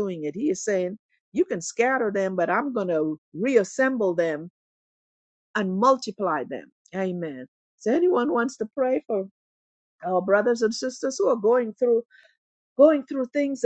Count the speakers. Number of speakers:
one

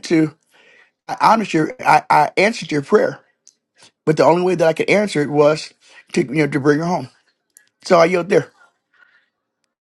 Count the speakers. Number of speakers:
one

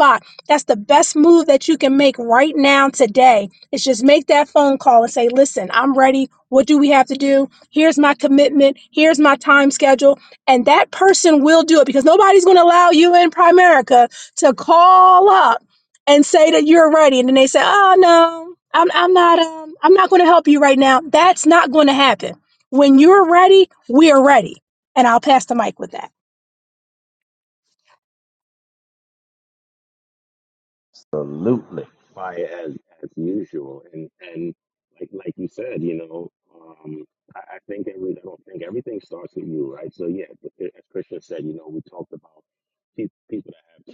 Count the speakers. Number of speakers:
two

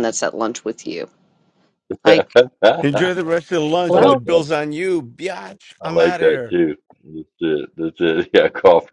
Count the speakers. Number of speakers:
three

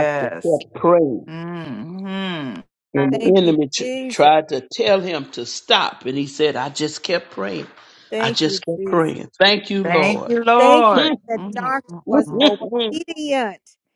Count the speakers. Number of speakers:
three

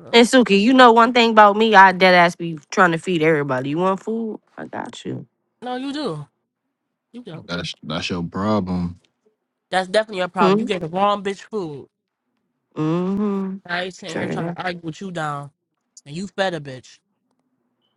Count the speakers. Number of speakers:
three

